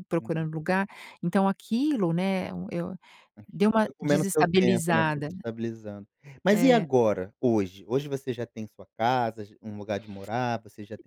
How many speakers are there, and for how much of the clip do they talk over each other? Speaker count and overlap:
2, about 18%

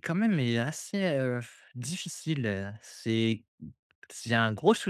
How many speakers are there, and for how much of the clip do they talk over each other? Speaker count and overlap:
1, no overlap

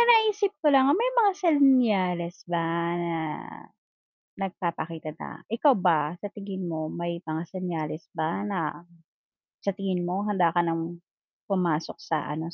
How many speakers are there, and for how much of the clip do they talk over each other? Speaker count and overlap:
1, no overlap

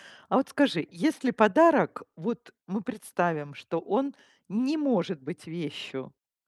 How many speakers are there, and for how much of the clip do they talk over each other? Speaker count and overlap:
1, no overlap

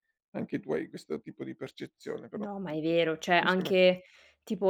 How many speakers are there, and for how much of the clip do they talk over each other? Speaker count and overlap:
2, about 15%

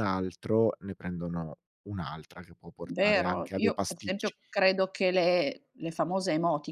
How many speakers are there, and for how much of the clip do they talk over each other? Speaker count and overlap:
2, about 22%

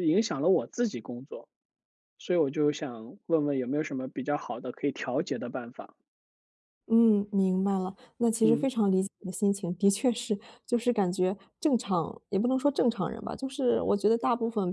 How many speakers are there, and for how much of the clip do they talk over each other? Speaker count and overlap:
2, about 1%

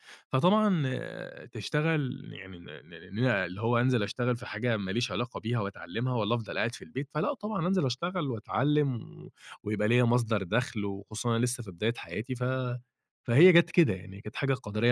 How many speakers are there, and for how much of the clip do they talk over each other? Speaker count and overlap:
1, no overlap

